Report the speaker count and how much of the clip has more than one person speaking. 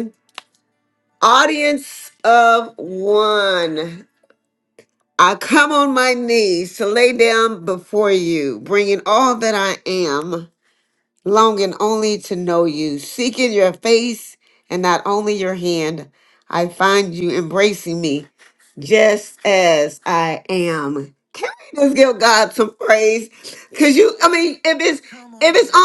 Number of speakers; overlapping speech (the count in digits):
1, no overlap